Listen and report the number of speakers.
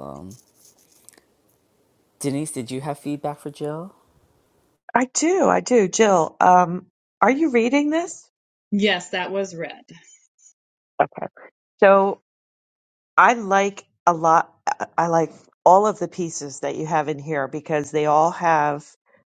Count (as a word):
three